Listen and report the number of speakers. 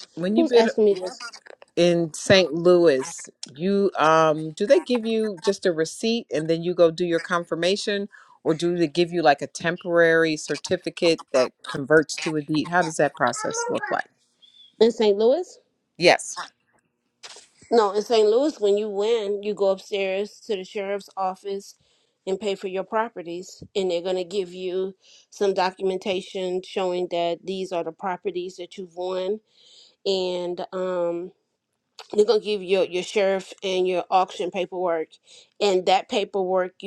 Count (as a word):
two